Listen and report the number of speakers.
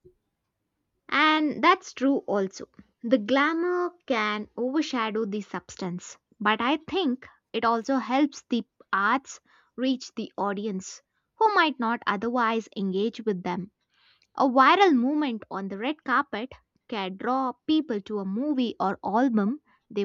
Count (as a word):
one